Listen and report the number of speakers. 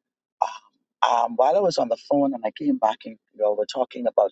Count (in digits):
1